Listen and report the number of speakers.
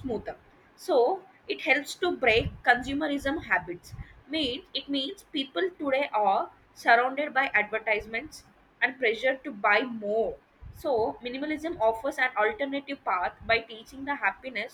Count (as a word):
one